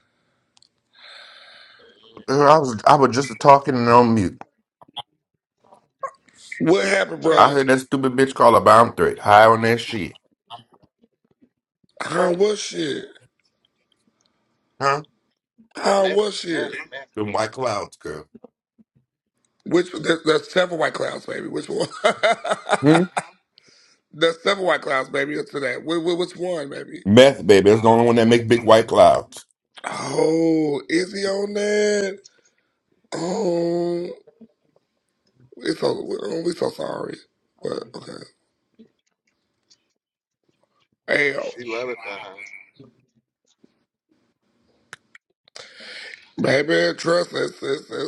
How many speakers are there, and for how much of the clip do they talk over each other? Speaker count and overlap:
three, about 3%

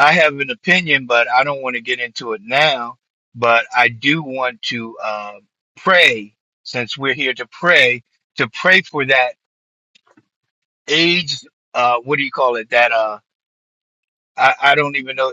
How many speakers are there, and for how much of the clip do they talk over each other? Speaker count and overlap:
one, no overlap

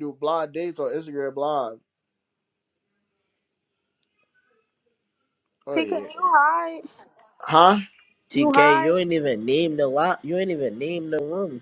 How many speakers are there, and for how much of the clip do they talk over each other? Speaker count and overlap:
three, about 8%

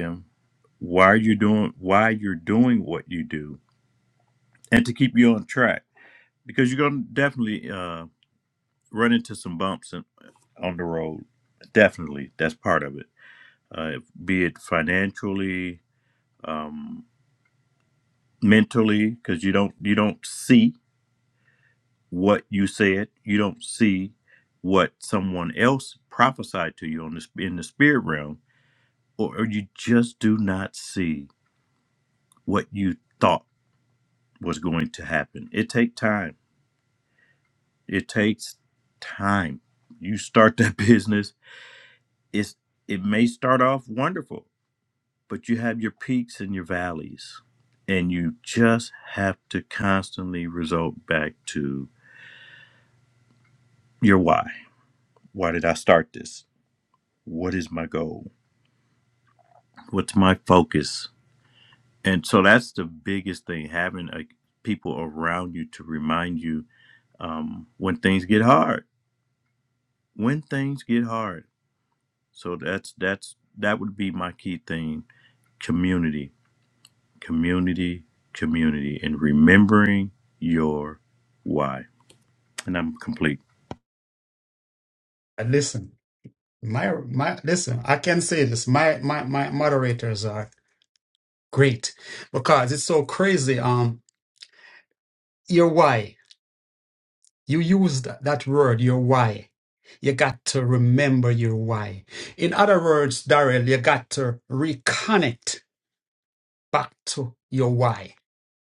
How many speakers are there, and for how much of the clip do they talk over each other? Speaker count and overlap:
two, no overlap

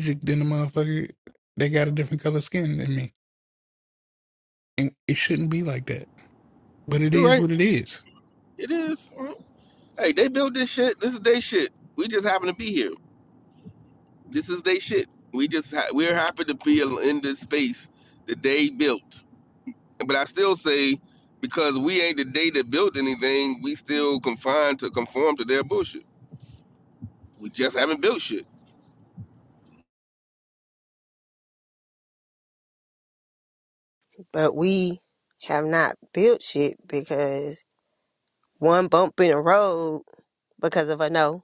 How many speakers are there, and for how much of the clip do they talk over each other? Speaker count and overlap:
three, about 1%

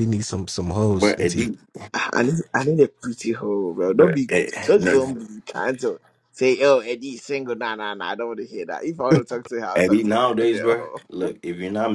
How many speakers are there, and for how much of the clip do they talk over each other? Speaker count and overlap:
three, about 22%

